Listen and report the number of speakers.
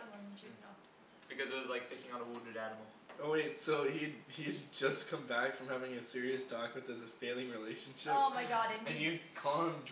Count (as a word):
three